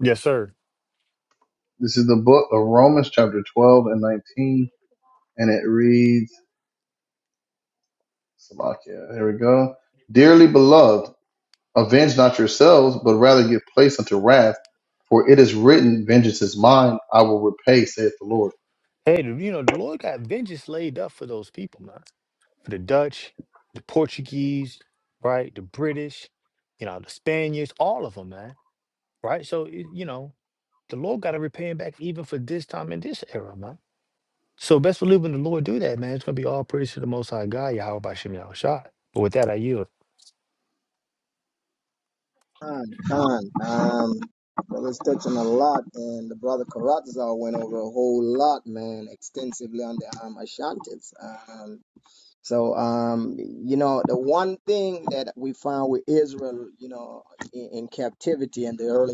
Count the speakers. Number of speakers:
3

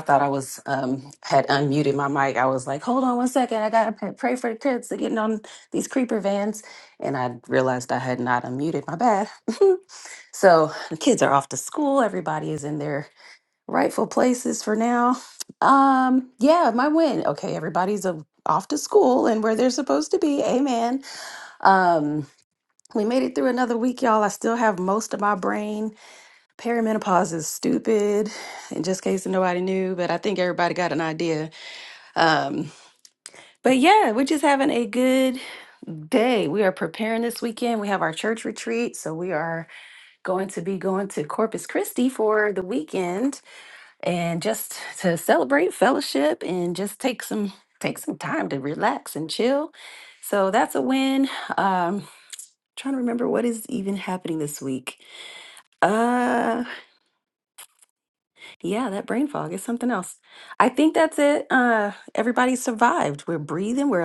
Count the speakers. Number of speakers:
1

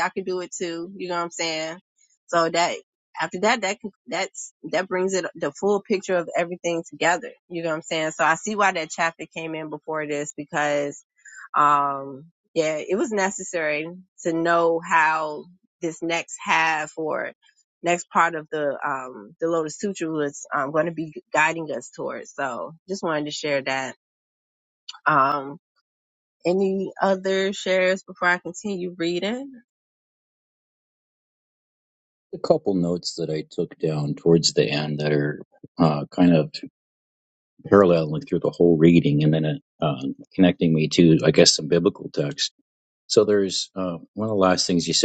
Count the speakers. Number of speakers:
2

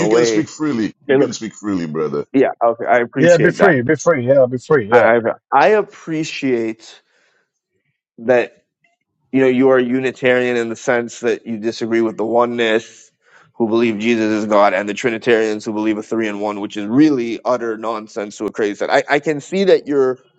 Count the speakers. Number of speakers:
3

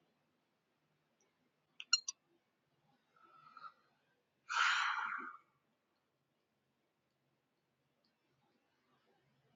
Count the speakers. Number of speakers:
0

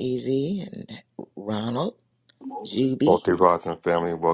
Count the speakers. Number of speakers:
2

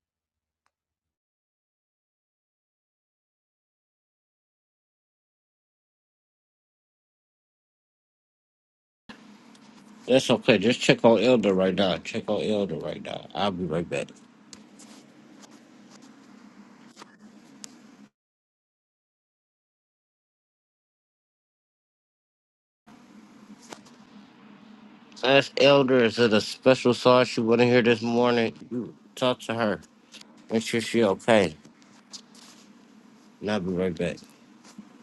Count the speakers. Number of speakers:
1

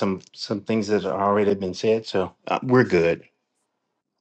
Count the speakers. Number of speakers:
1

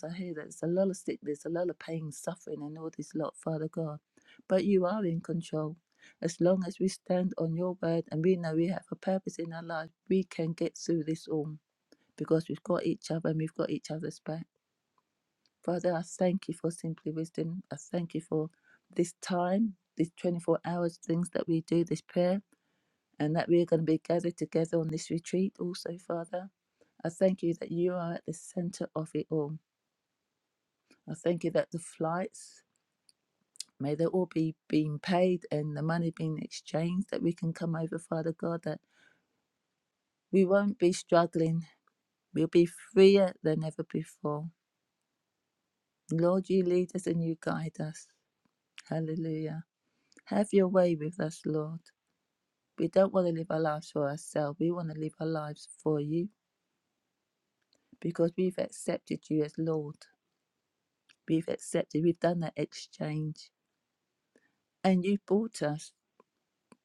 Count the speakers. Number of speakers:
1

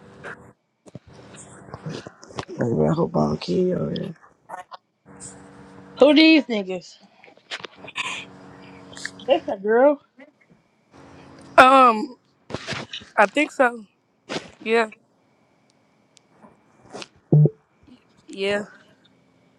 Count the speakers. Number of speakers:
3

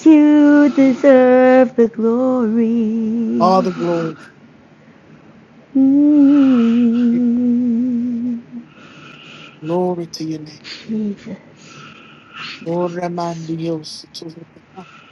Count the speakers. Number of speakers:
2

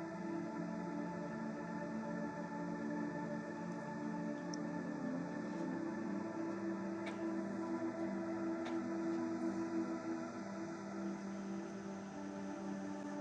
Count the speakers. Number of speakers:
0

